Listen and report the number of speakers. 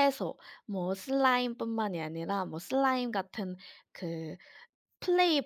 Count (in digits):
1